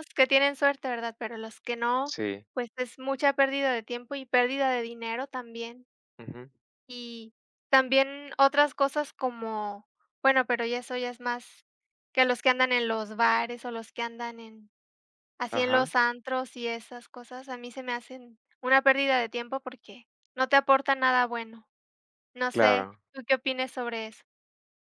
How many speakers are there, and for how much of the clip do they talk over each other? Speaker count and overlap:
2, about 3%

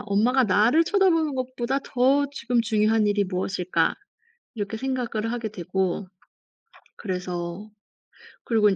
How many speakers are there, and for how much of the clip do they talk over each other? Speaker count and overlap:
1, no overlap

